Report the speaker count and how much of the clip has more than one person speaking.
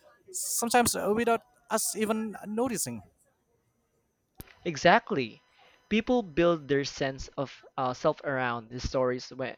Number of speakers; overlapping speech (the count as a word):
two, no overlap